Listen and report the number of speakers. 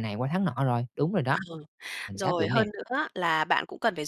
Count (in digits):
2